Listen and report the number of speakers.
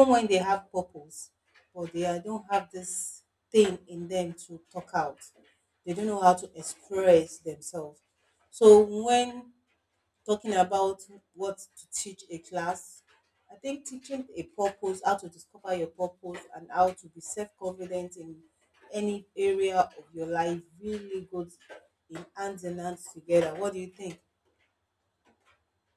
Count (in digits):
1